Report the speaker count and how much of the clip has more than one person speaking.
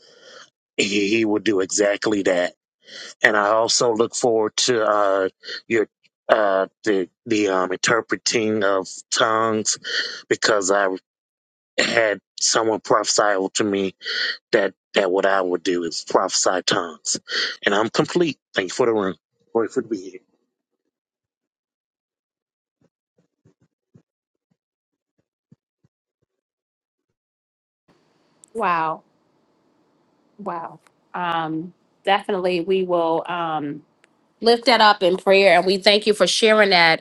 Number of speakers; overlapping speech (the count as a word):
two, no overlap